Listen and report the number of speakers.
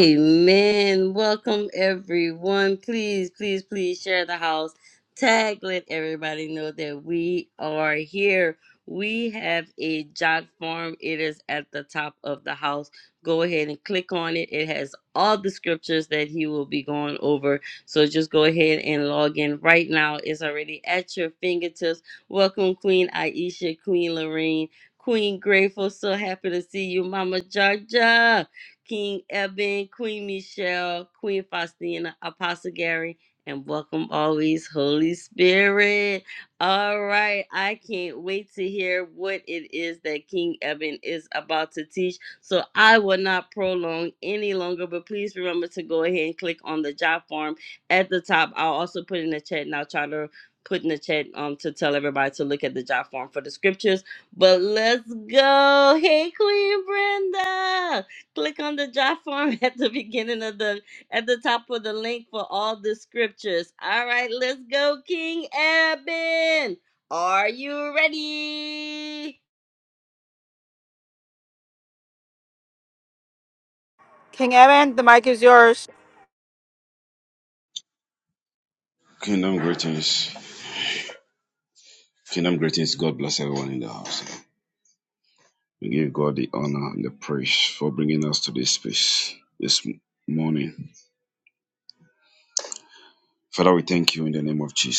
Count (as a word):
three